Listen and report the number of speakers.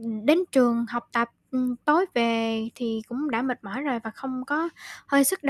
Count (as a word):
one